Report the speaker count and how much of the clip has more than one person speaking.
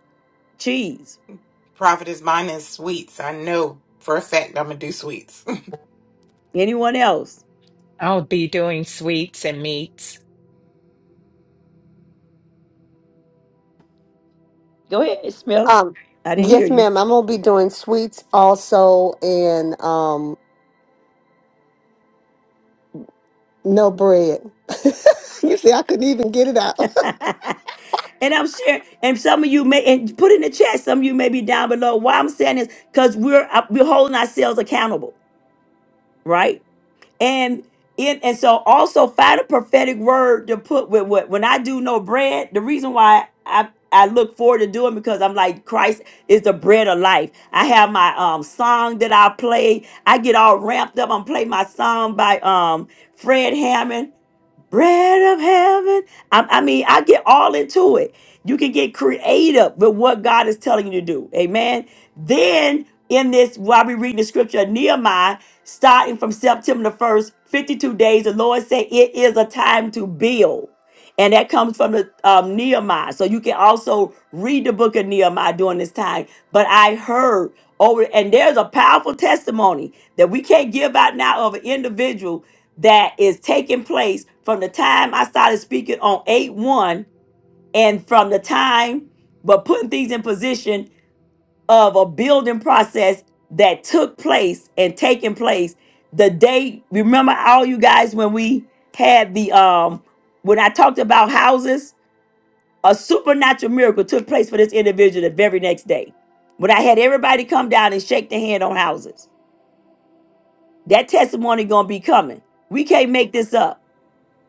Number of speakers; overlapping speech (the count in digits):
4, under 1%